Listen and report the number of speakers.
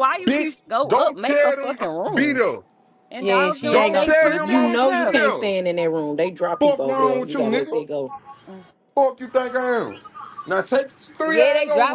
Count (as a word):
three